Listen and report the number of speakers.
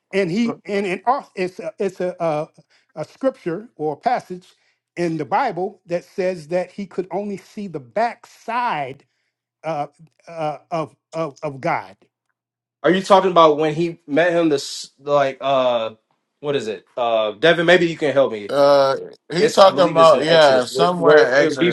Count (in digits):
3